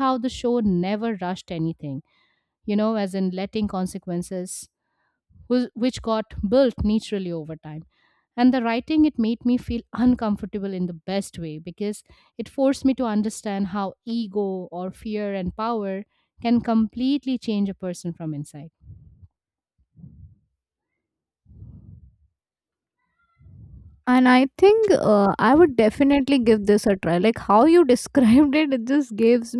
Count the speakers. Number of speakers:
two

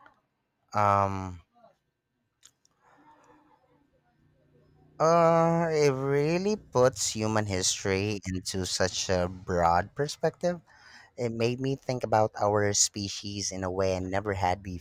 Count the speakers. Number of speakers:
one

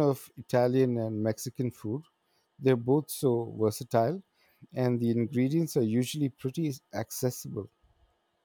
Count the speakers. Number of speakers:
one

